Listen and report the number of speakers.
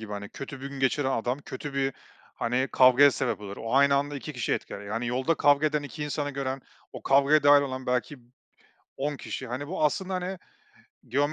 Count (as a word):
one